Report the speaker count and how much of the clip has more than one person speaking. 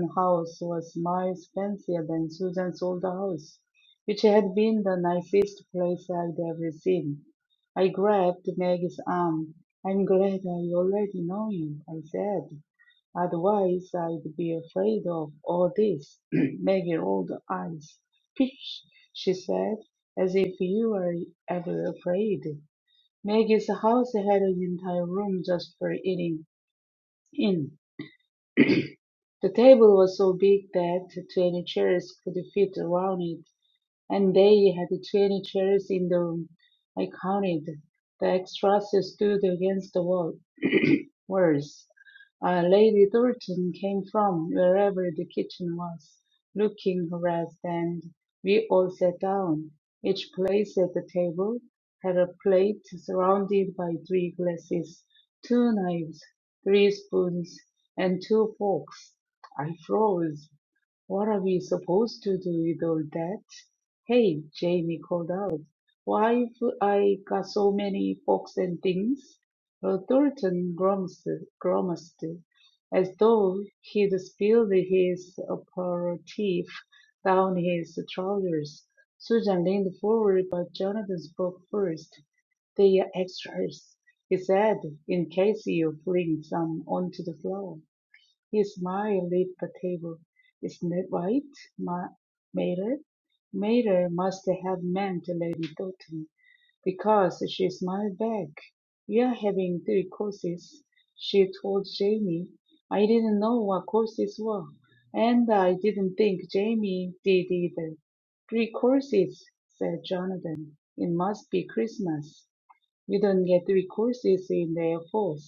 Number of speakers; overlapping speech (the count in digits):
1, no overlap